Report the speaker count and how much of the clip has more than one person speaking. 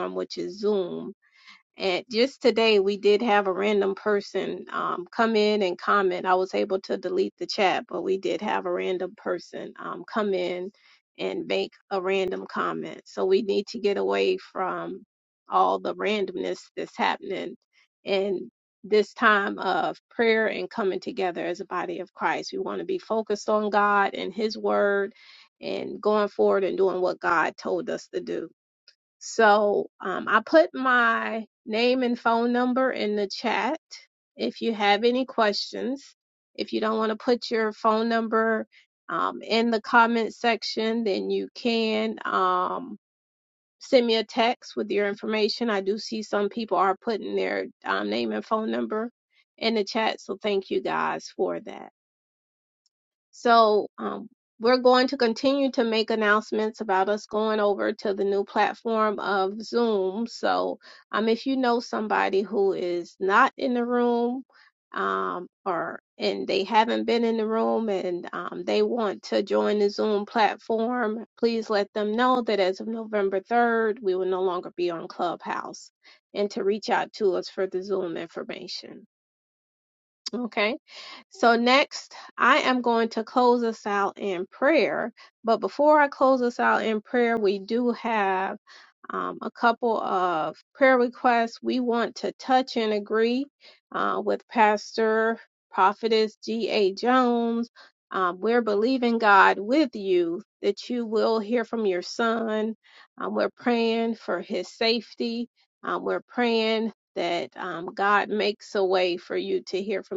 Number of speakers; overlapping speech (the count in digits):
1, no overlap